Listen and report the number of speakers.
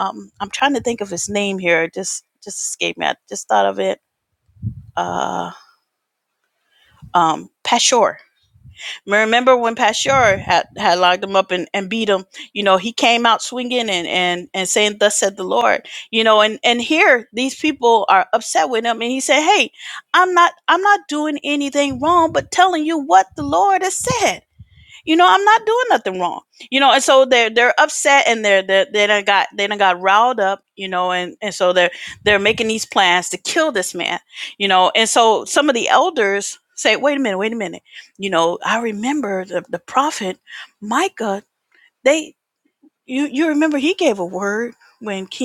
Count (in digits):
1